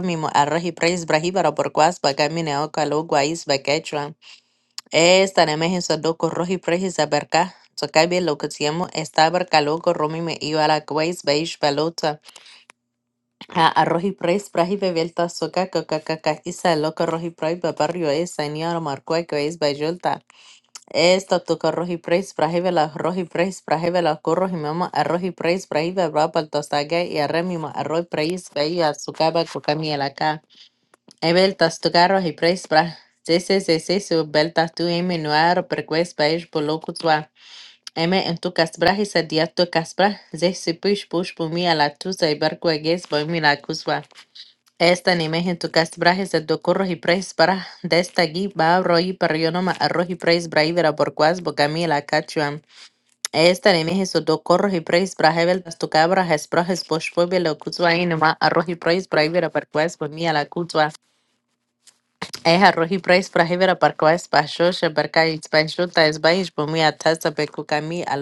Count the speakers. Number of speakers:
1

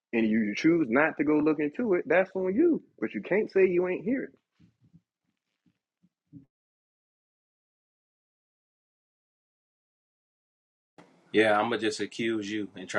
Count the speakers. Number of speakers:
2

